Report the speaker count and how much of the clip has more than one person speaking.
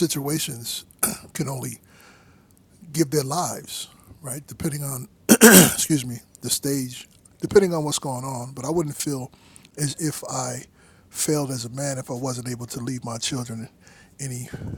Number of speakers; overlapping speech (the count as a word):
one, no overlap